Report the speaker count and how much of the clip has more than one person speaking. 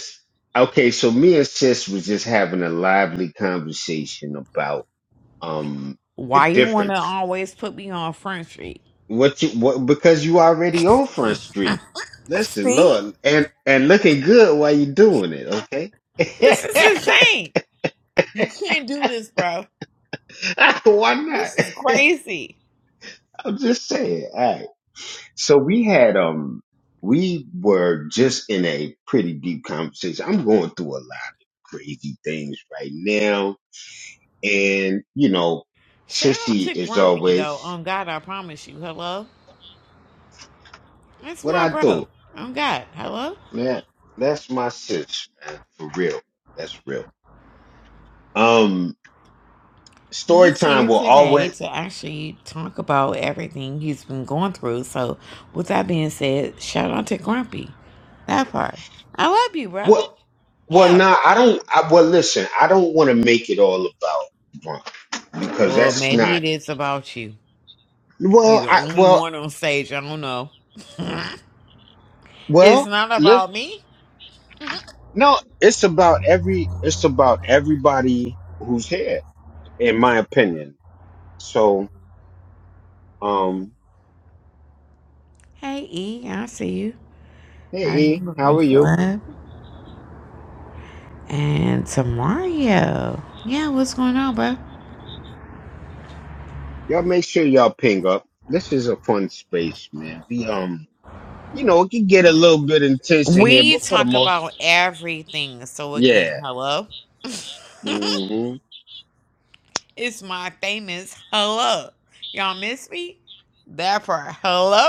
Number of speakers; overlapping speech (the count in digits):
2, about 9%